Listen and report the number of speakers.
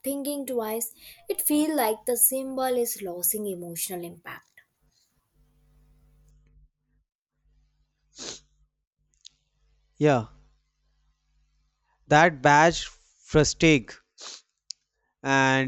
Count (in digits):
2